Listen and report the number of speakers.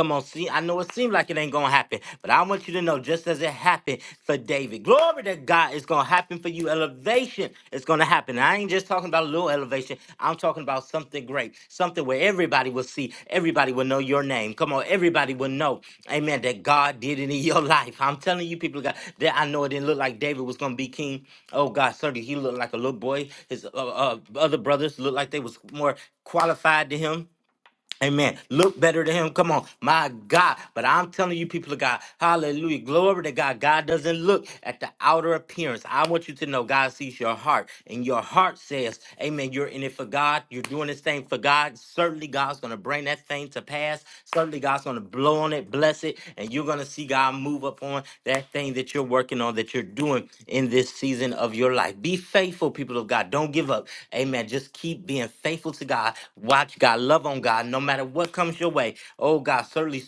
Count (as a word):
one